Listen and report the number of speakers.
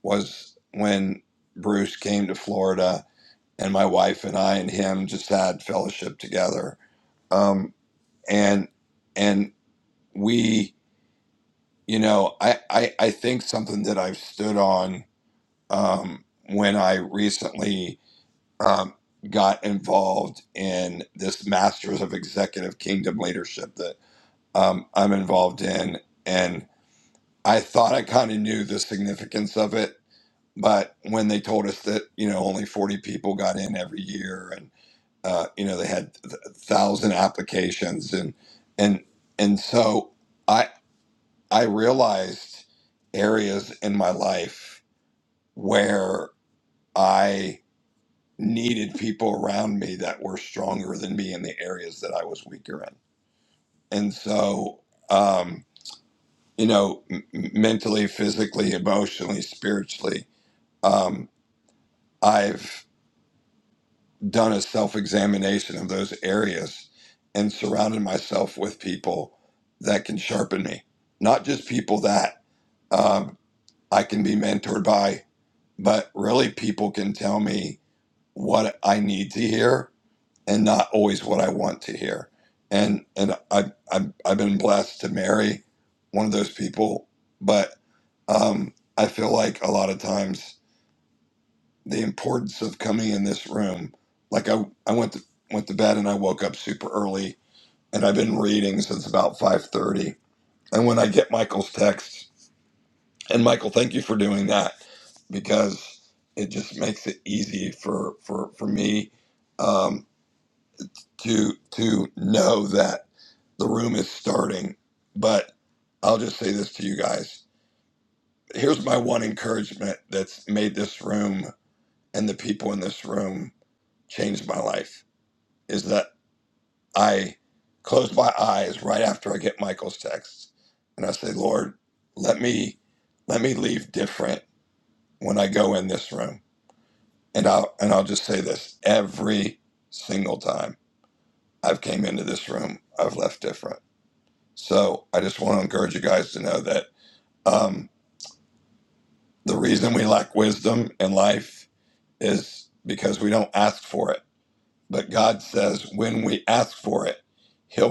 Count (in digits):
1